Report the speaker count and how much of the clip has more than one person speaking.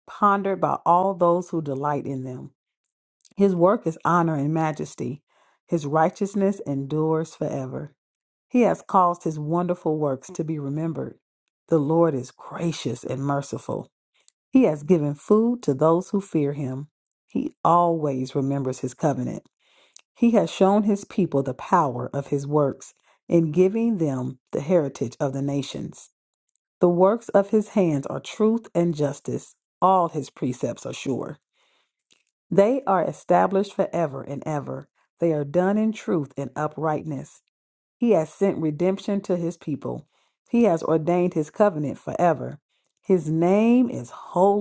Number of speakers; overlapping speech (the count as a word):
one, no overlap